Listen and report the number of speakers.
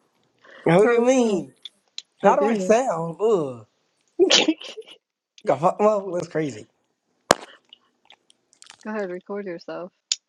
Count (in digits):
2